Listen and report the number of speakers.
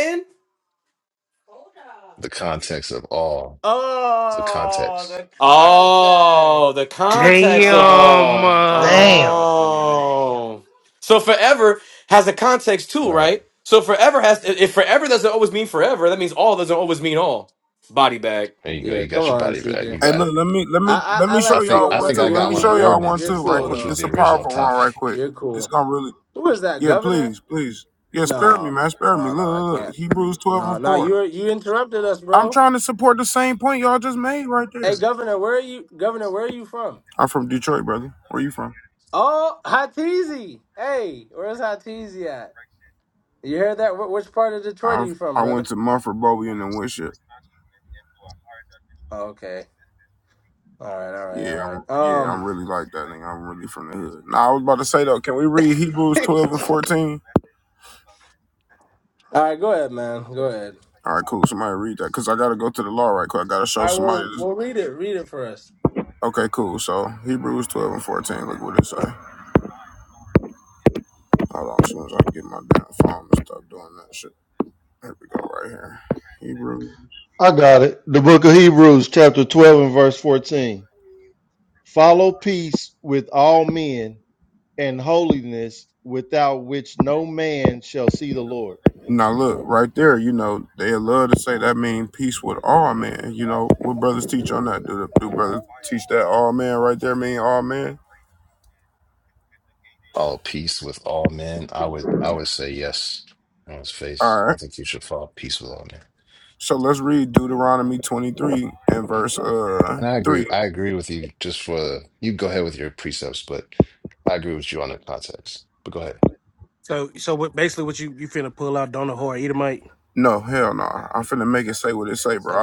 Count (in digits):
6